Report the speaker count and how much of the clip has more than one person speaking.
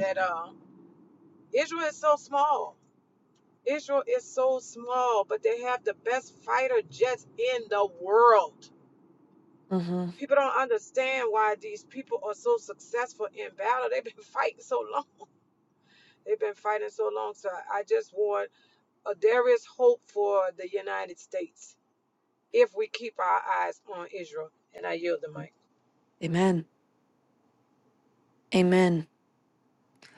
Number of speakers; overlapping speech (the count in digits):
2, no overlap